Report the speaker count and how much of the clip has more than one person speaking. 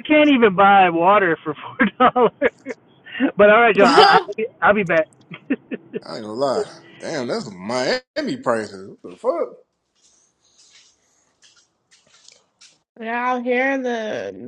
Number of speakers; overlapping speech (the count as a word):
three, no overlap